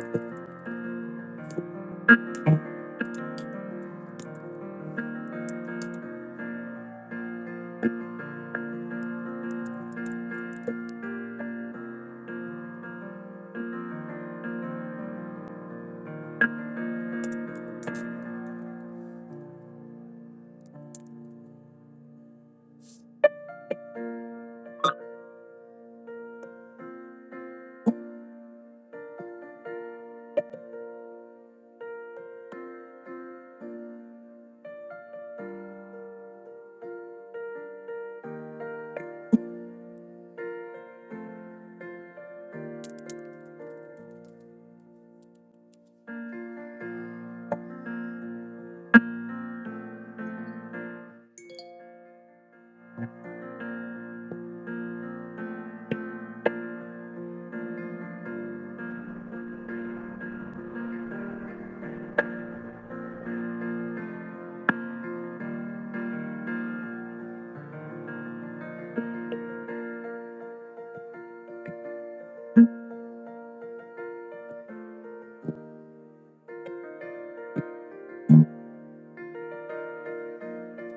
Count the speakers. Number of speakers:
0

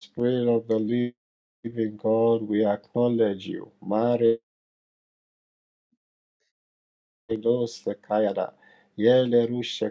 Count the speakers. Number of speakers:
1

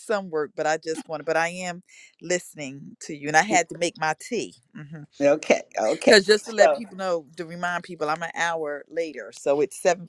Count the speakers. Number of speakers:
2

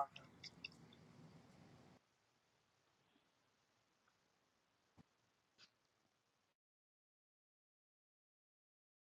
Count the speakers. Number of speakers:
0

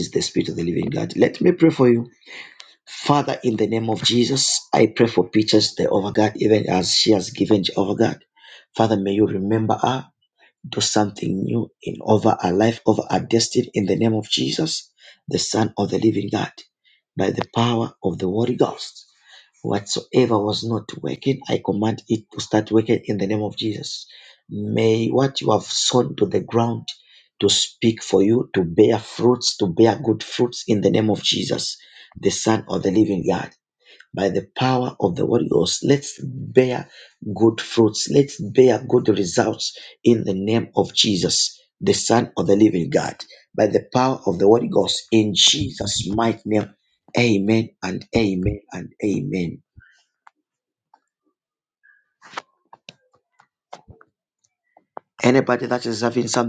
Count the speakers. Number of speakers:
1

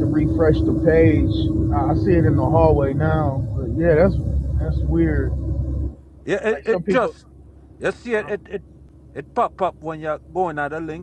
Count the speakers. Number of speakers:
2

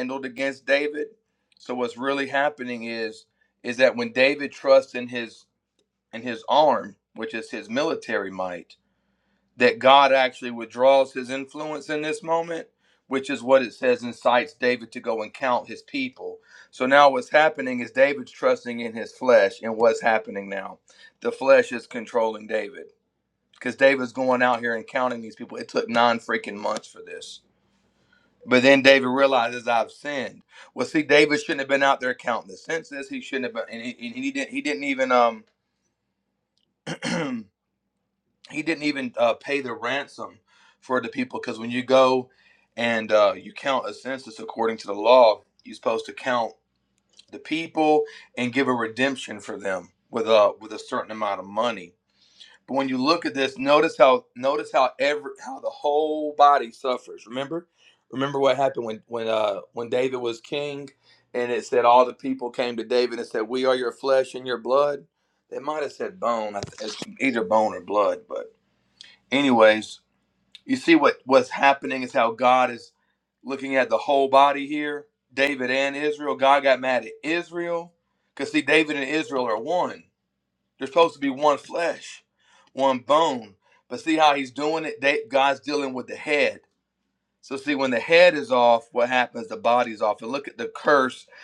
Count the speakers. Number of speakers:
1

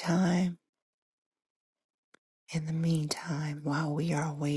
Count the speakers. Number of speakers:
1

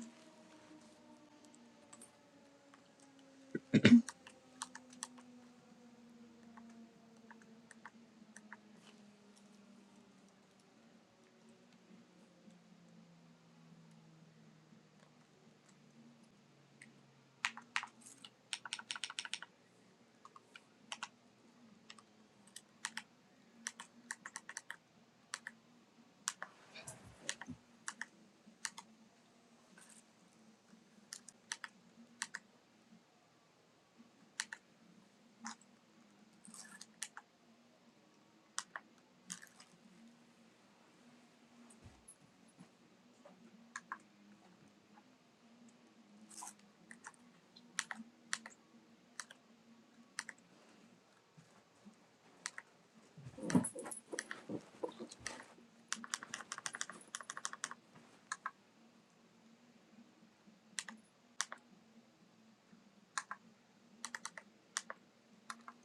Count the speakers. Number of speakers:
0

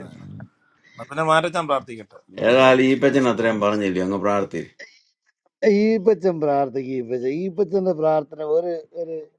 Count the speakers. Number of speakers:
3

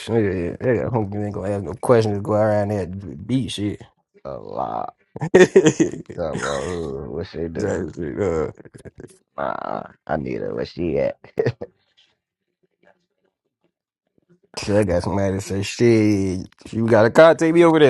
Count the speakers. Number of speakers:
2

